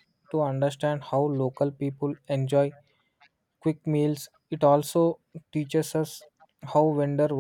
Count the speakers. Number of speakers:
1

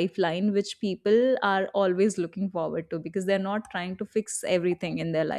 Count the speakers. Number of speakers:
1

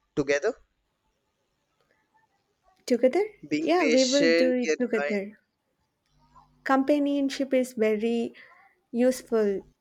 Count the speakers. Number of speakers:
2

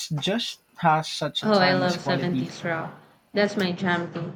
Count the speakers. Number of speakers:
2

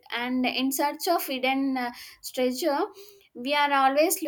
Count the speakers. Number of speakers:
1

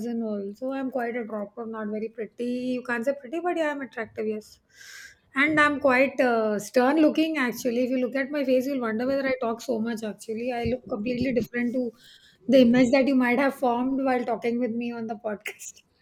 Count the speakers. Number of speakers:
1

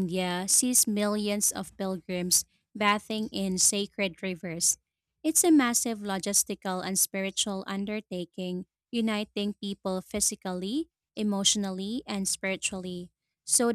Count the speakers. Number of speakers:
1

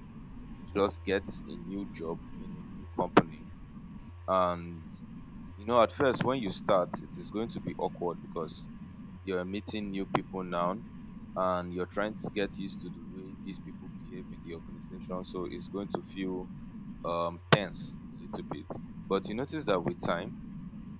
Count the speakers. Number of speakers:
1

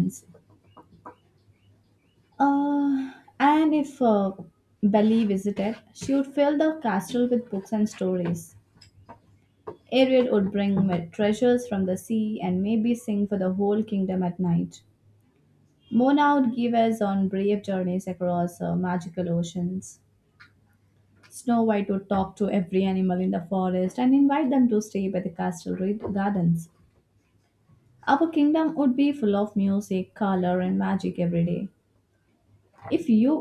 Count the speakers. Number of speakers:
1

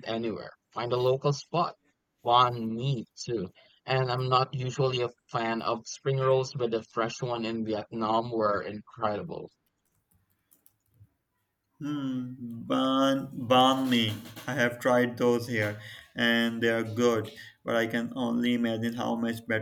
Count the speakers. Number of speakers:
2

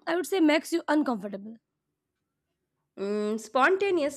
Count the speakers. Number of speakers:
2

